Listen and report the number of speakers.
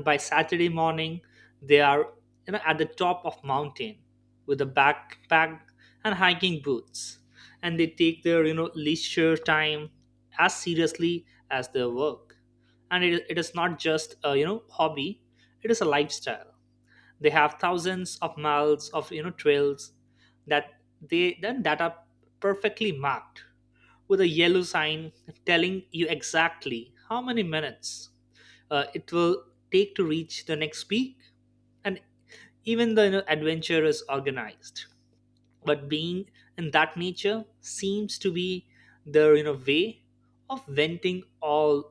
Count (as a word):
one